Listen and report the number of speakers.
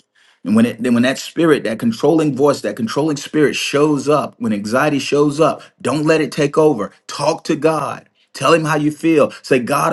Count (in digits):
1